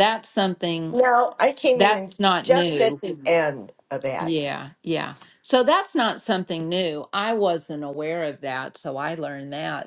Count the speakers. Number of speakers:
2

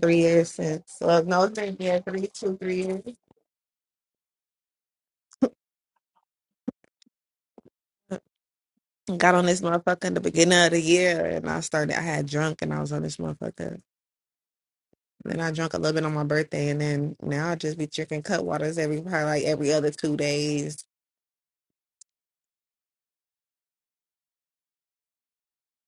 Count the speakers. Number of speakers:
1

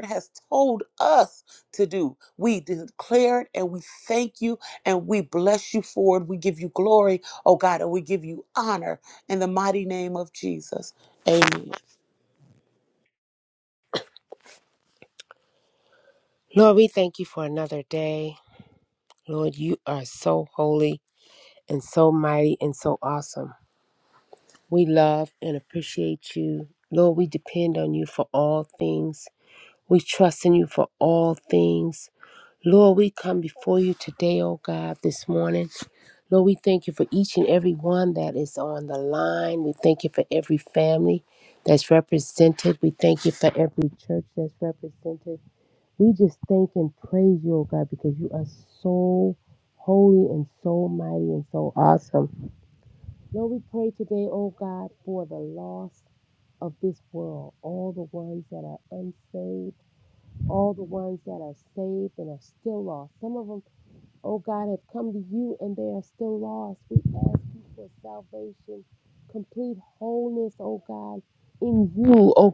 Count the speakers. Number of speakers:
2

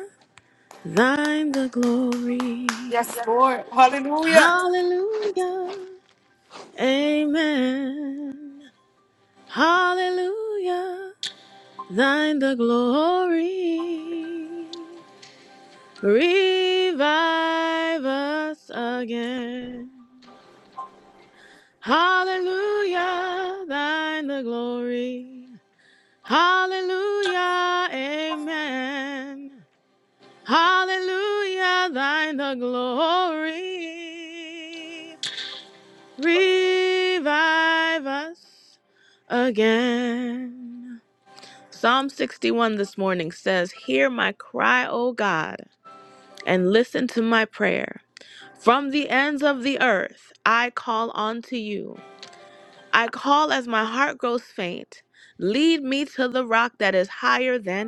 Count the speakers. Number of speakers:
2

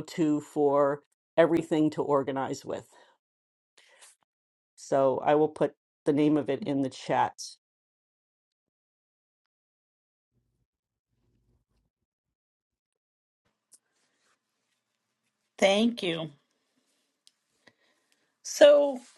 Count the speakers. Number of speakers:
2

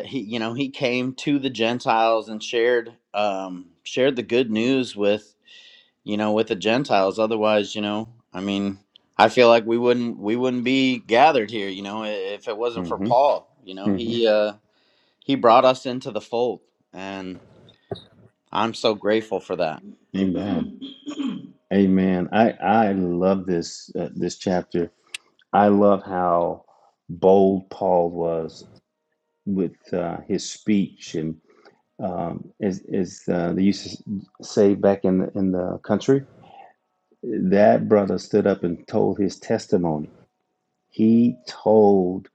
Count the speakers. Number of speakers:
2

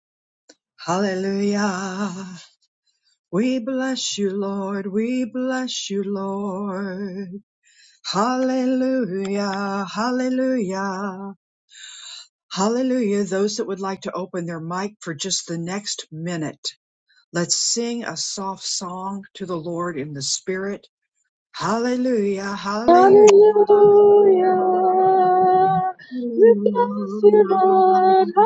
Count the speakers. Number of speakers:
2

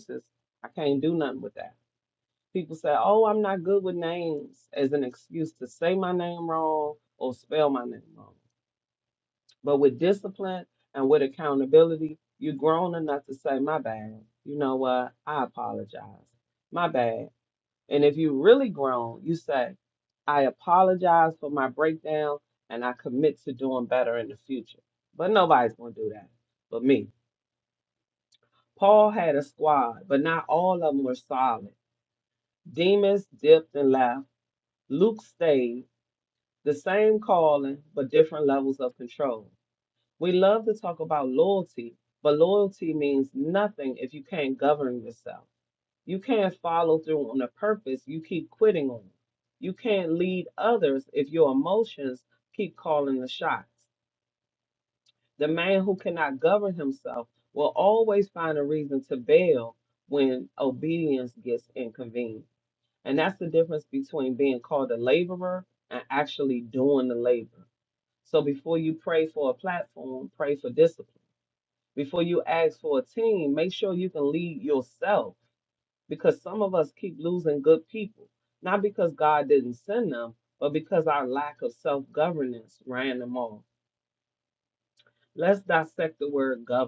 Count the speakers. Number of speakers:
1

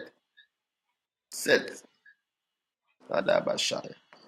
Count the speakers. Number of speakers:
1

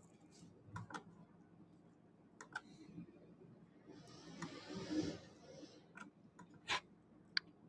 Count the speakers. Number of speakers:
0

